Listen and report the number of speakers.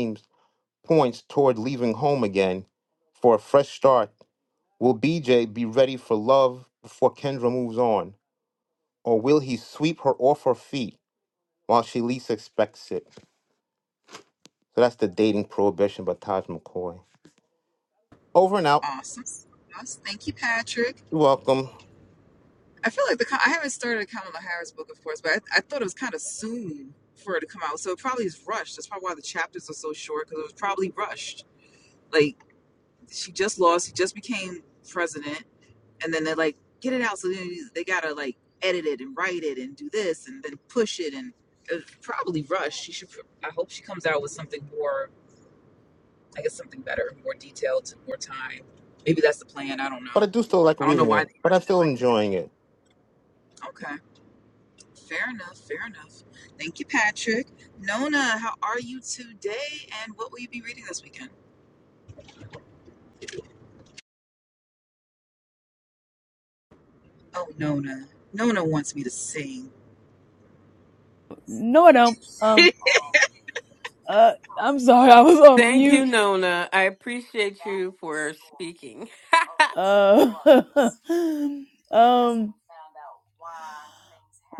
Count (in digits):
4